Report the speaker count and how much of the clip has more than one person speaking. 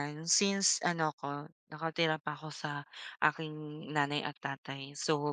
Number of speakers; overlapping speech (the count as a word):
one, no overlap